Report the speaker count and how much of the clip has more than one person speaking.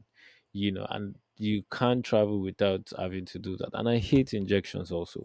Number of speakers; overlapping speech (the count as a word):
one, no overlap